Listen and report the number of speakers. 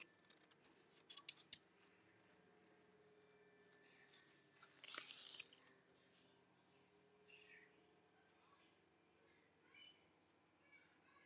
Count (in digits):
0